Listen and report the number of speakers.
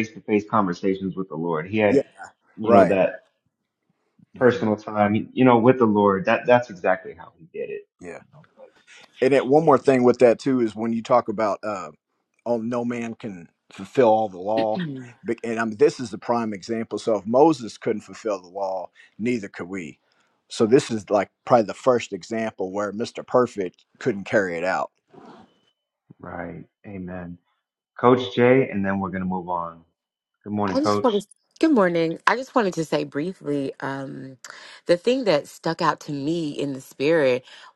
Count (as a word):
three